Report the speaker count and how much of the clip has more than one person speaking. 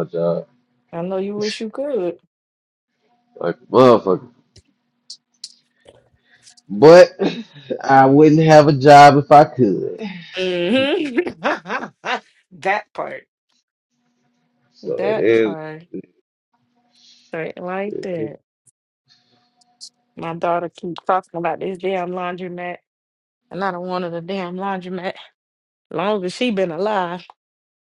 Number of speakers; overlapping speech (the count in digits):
2, about 4%